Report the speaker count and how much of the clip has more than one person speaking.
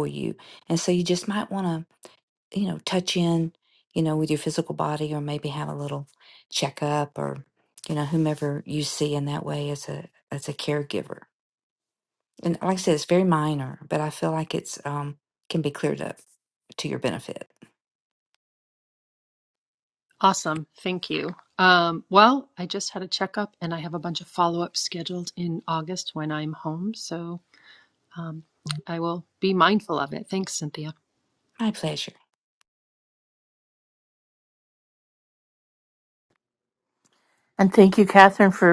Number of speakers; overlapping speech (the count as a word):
three, no overlap